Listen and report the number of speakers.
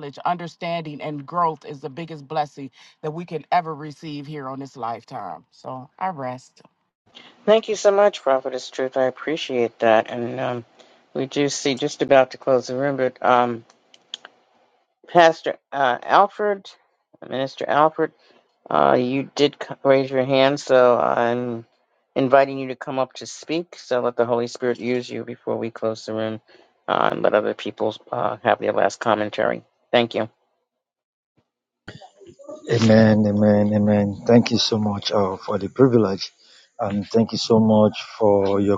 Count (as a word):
three